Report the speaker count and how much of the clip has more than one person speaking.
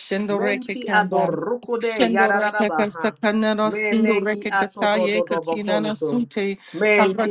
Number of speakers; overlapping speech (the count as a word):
two, about 63%